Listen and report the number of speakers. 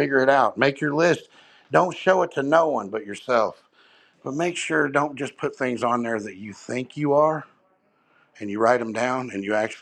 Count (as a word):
one